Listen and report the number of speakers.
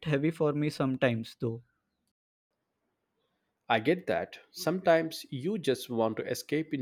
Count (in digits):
2